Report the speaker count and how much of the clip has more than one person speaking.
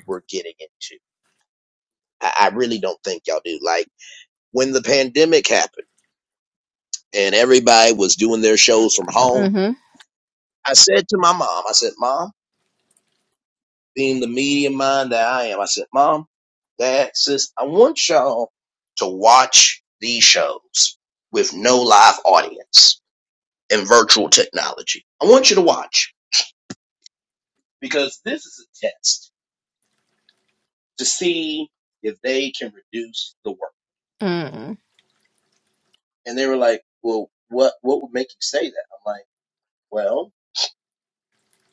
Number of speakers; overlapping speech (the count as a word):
two, about 1%